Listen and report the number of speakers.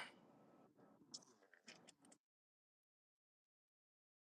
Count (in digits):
0